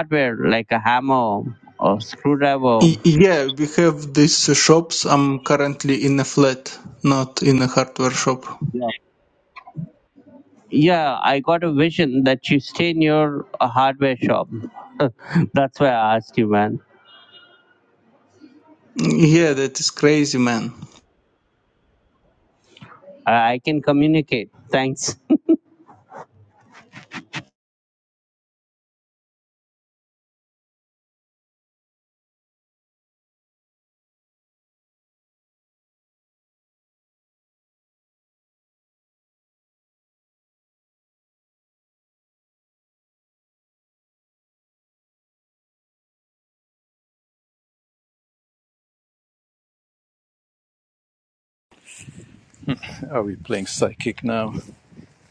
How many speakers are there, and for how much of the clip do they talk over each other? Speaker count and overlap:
3, under 1%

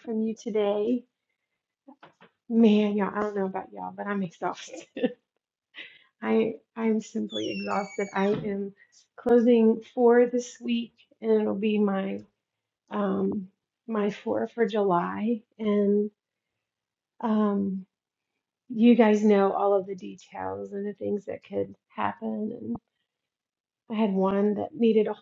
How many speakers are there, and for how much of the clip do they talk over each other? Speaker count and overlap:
1, no overlap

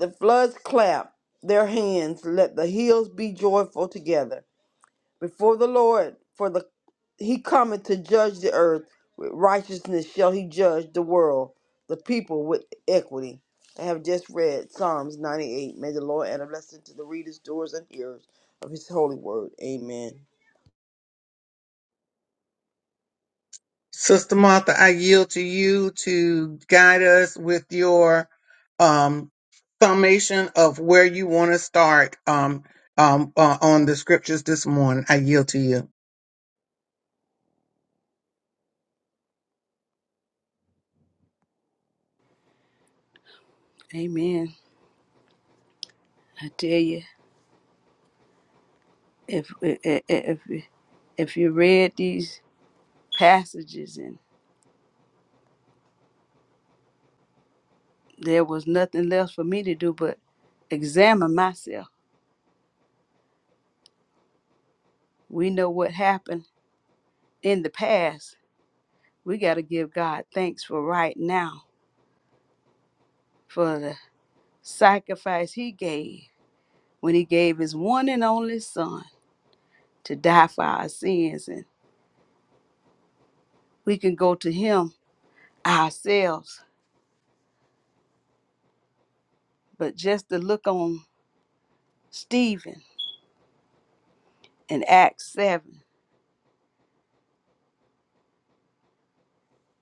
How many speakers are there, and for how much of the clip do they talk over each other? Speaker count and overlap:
3, no overlap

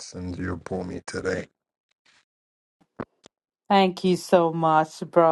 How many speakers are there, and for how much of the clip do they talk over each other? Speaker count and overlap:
2, no overlap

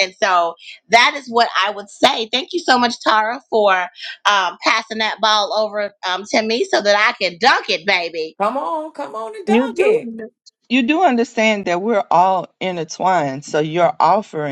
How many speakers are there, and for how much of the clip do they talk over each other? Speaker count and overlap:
3, about 4%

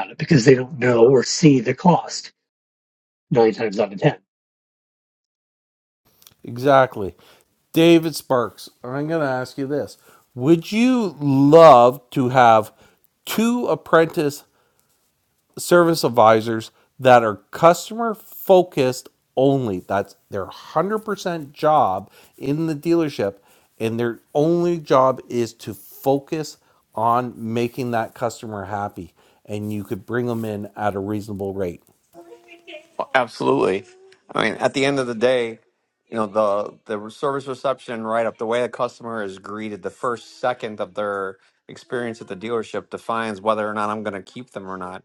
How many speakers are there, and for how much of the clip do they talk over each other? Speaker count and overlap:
3, no overlap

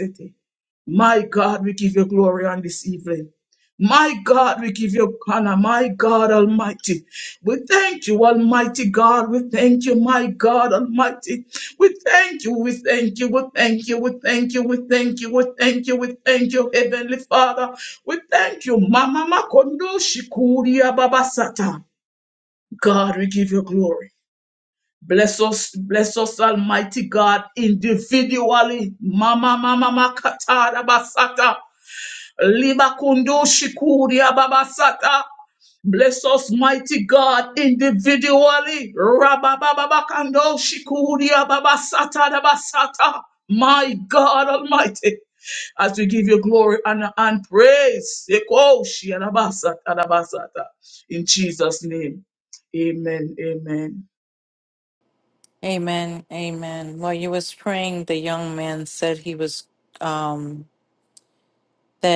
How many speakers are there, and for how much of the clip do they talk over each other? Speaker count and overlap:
2, no overlap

